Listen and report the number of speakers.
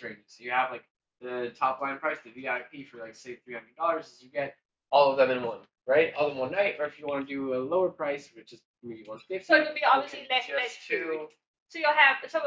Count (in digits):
2